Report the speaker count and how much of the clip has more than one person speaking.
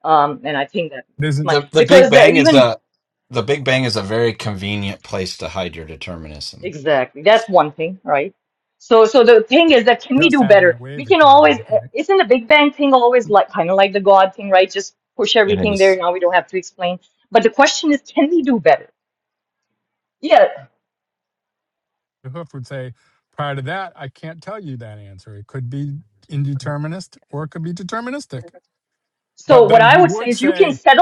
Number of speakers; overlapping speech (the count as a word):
three, about 14%